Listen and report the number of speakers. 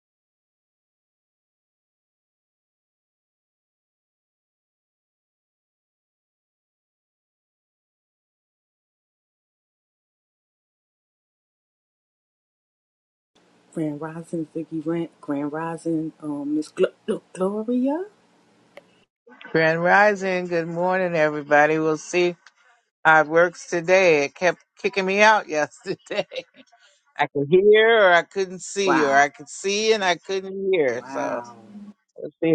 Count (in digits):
2